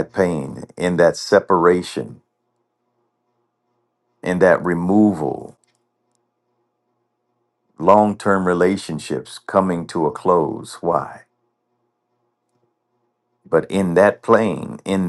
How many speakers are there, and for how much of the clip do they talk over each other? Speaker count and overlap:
one, no overlap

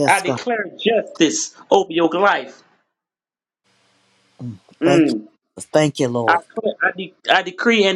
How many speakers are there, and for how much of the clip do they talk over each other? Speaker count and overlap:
two, about 11%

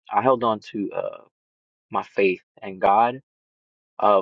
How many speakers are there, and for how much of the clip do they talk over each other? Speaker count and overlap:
one, no overlap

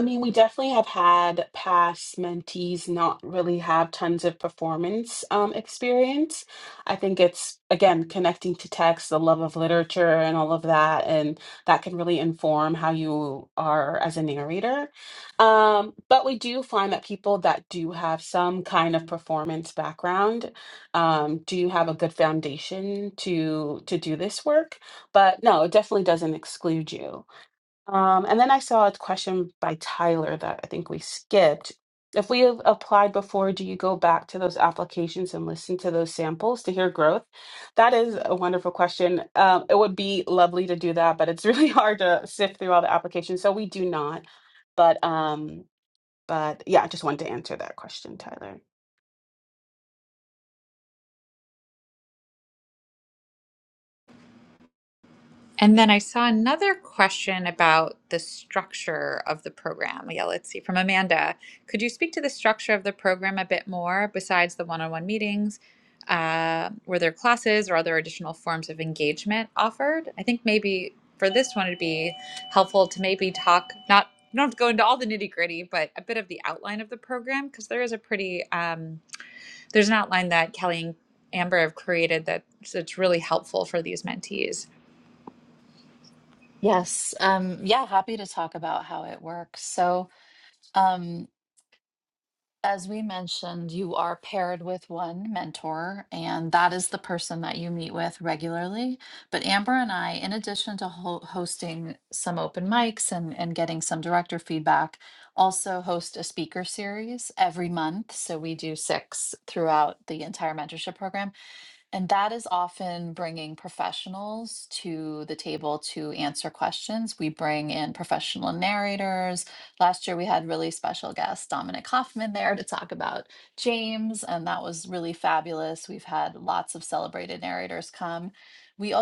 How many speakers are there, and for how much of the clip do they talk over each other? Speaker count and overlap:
three, no overlap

